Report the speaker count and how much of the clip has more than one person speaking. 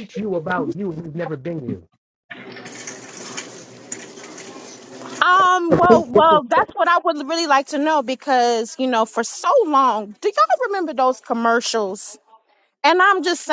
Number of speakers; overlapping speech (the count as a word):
two, no overlap